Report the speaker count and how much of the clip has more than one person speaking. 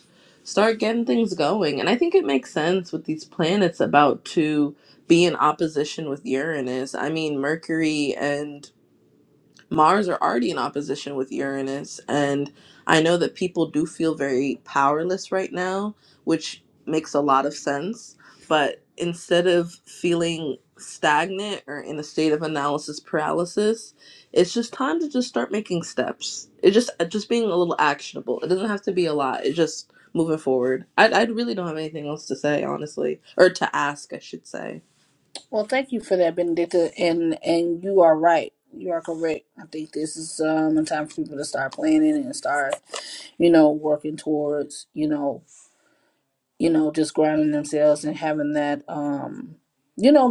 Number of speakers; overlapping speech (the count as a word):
two, no overlap